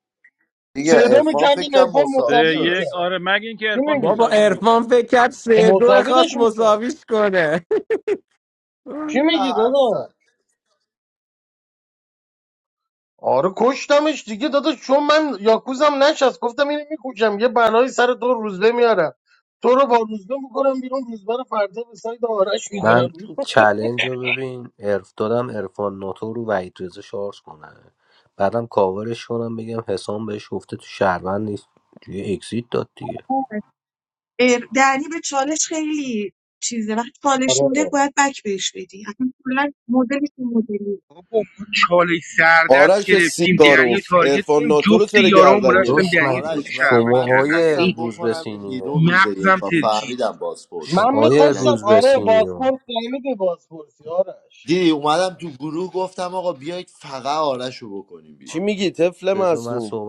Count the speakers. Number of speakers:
8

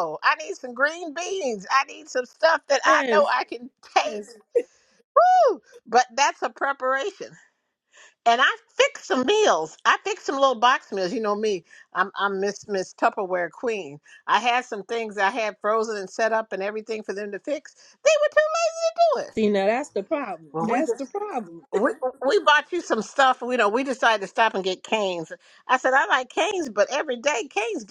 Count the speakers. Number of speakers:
2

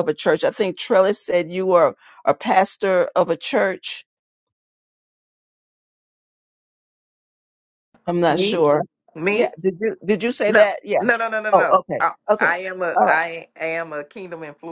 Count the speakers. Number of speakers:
2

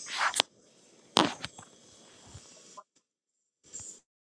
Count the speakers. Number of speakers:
0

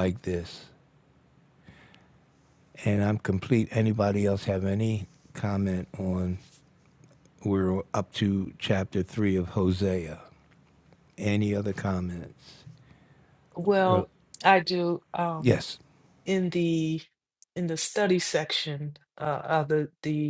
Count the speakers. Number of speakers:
2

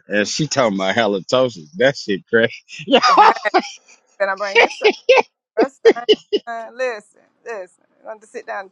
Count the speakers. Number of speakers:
2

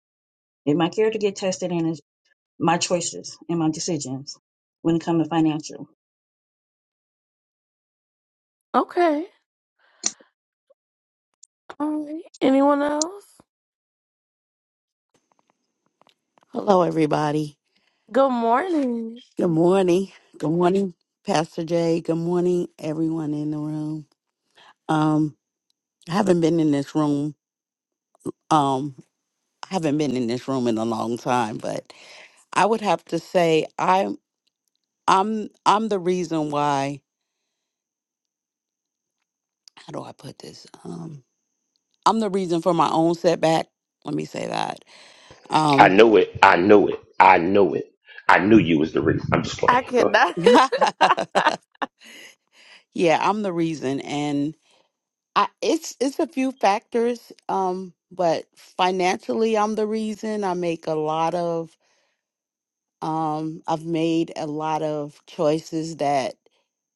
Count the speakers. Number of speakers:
4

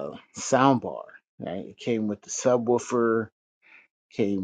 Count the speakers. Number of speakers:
1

